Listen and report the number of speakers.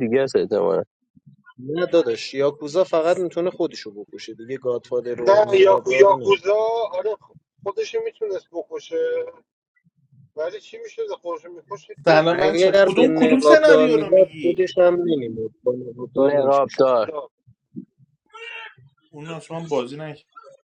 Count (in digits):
4